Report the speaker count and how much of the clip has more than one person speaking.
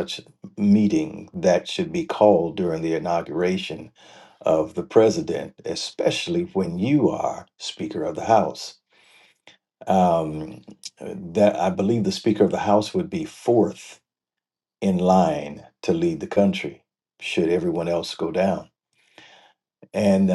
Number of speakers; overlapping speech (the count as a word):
one, no overlap